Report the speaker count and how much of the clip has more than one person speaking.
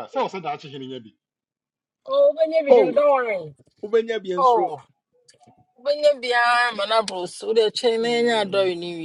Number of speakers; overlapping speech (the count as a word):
three, about 7%